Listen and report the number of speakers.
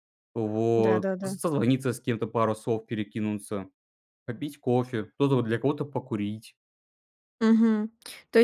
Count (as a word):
two